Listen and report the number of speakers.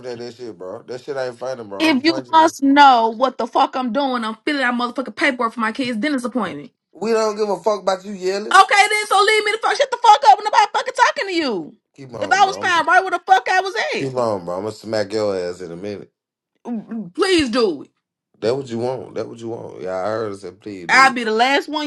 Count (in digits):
2